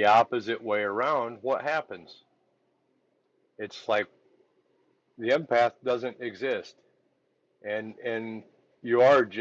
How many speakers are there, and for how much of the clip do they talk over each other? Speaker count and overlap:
1, no overlap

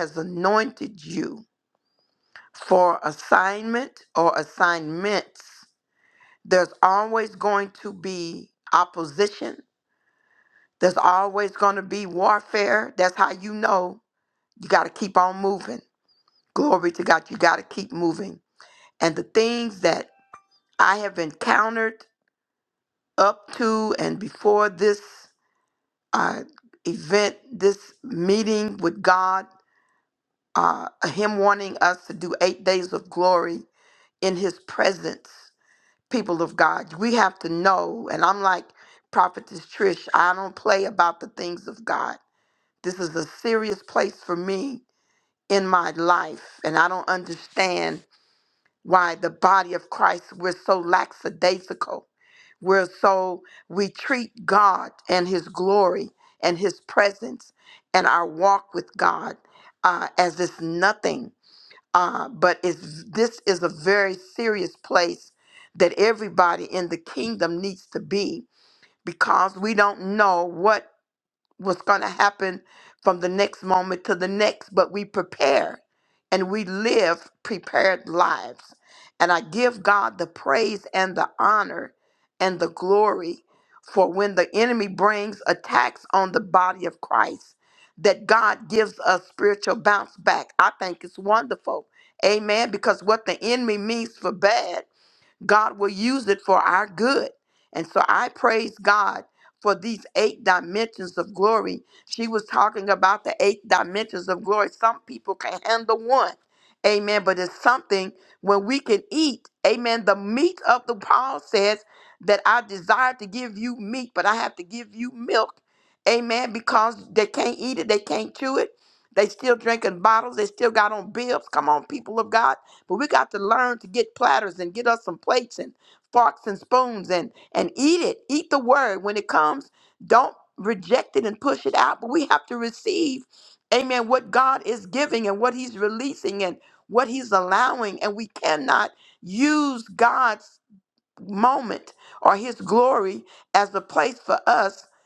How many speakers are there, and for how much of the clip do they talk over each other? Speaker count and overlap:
1, no overlap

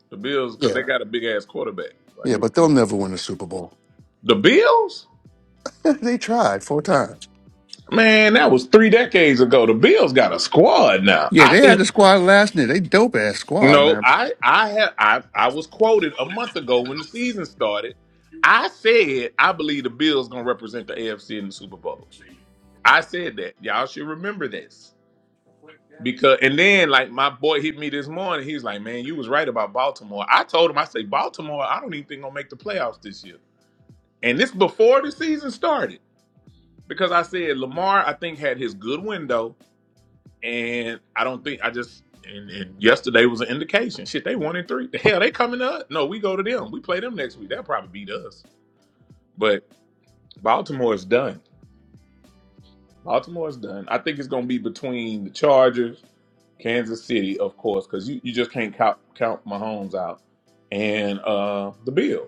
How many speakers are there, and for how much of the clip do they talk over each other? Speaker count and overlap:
2, about 2%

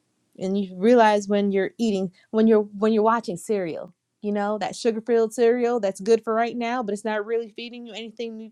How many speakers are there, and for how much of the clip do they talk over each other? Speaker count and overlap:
1, no overlap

